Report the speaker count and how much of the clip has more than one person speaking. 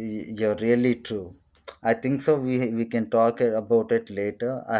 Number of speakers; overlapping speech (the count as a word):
one, no overlap